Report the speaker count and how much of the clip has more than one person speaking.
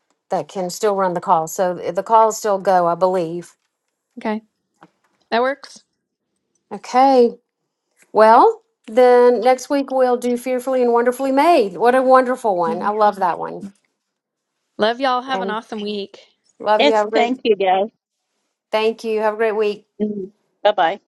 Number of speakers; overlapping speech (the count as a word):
three, about 5%